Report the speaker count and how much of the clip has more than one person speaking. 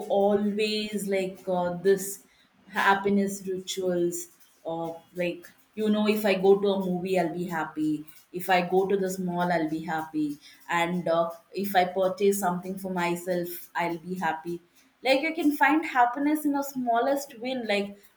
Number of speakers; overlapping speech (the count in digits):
1, no overlap